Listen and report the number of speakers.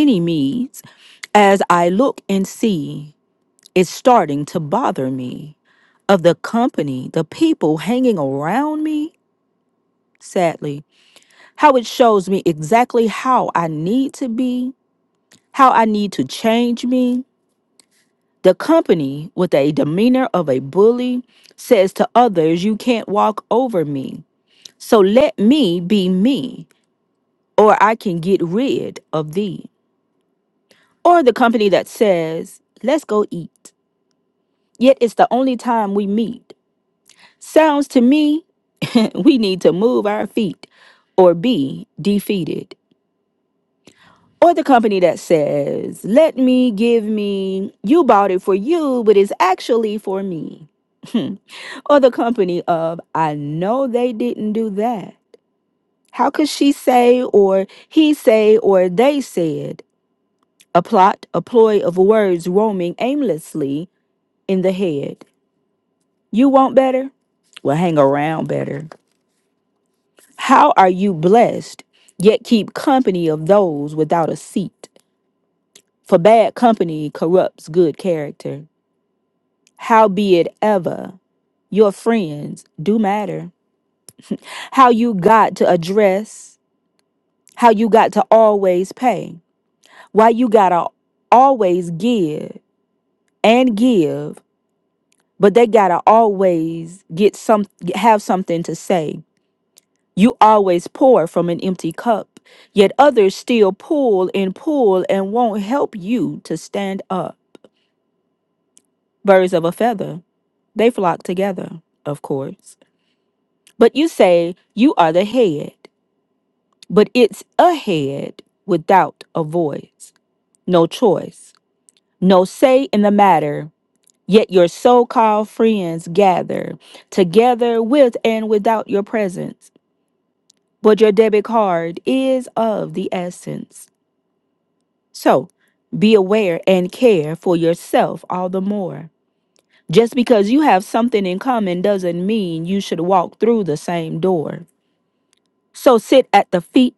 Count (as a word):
one